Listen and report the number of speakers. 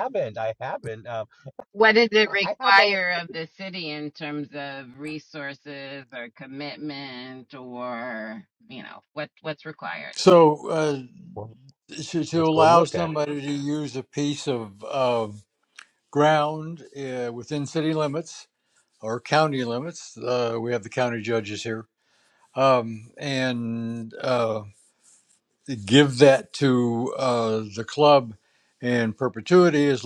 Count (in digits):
3